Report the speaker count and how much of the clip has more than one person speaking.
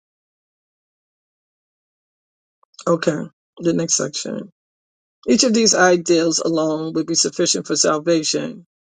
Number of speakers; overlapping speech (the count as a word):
one, no overlap